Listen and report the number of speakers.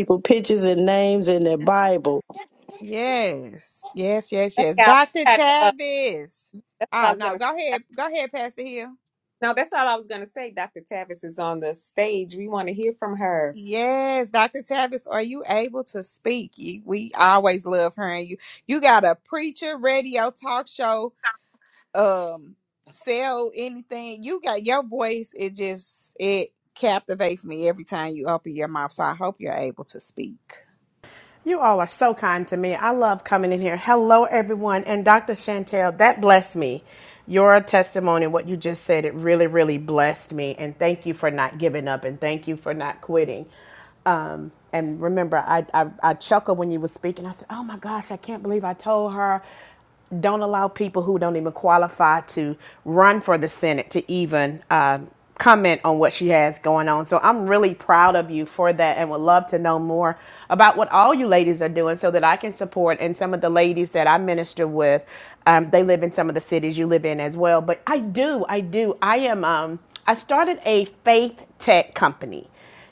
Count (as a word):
four